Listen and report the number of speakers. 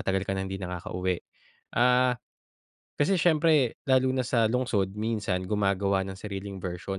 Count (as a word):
one